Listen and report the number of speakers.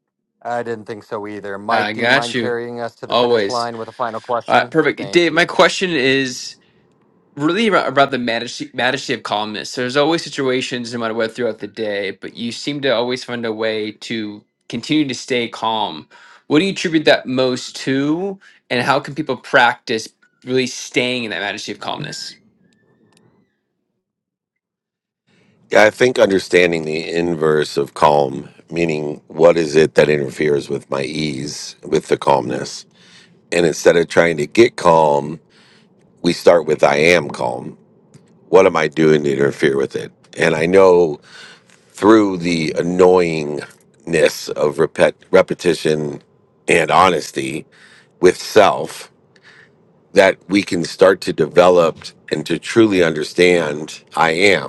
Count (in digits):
3